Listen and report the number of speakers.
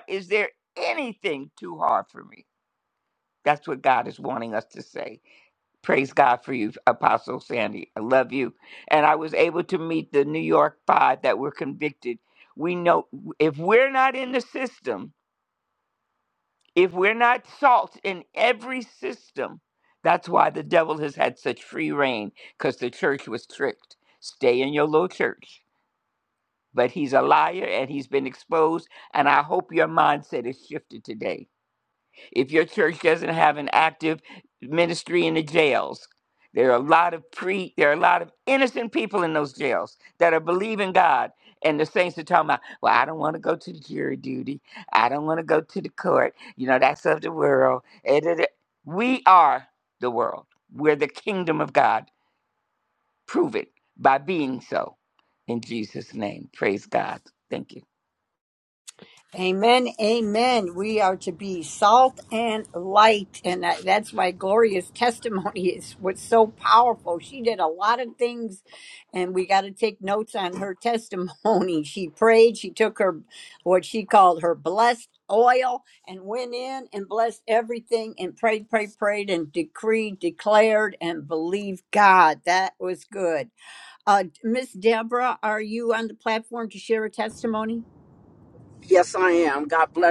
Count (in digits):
3